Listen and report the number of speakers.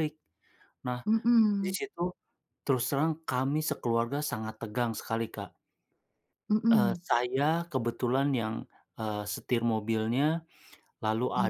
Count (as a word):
two